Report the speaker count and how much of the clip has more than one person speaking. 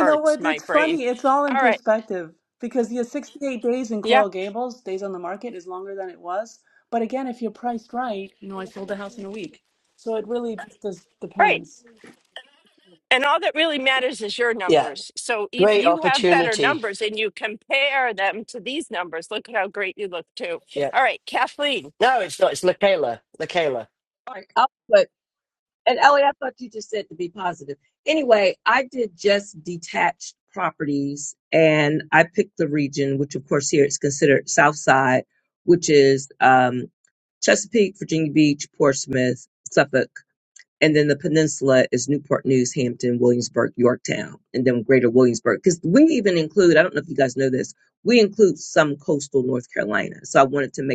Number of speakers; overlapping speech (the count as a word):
four, about 6%